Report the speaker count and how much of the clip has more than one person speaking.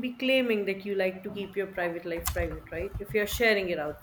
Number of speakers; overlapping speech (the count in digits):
1, no overlap